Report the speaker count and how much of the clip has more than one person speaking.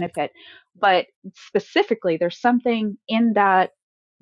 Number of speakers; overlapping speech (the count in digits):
1, no overlap